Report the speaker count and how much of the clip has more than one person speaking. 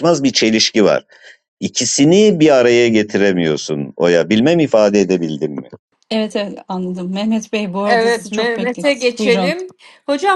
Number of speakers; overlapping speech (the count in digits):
3, about 13%